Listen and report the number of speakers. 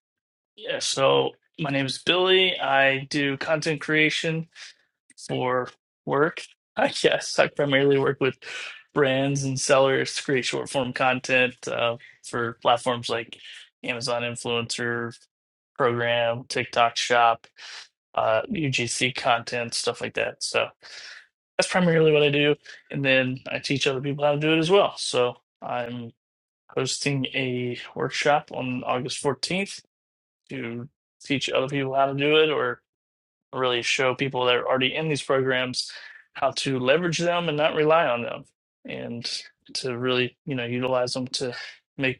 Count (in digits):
1